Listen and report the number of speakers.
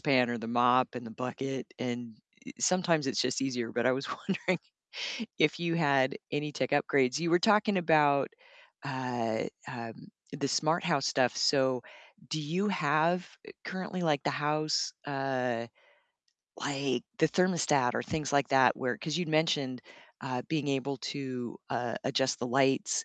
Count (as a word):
one